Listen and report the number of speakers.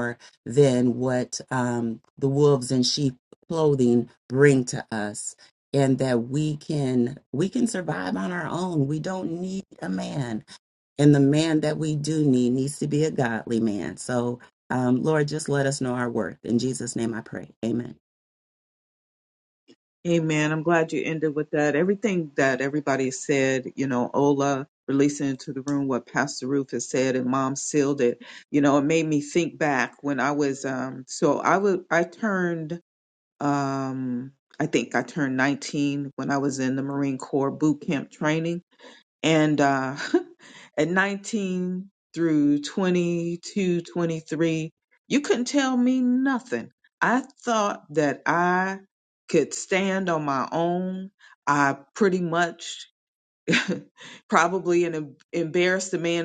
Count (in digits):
2